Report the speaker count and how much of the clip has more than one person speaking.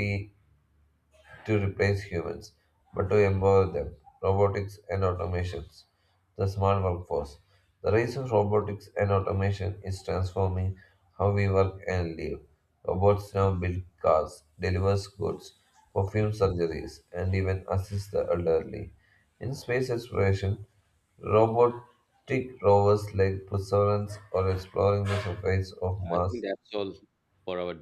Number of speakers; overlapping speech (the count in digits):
2, about 1%